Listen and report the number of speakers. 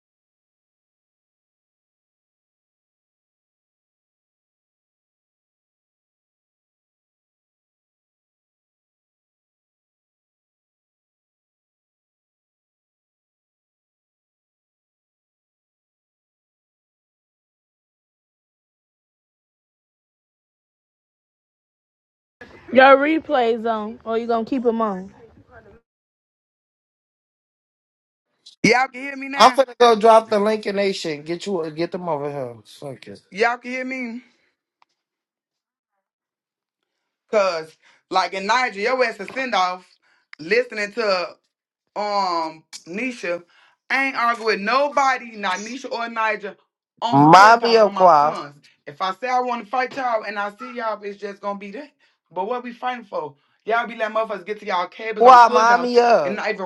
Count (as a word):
three